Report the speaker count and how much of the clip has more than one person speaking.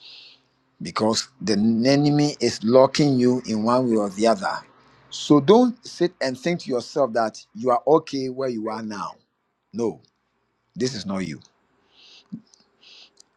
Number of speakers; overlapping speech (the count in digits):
1, no overlap